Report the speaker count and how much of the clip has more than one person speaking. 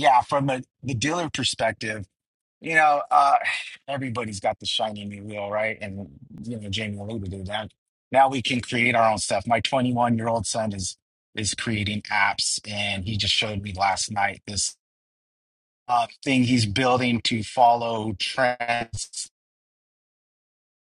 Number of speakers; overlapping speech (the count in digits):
1, no overlap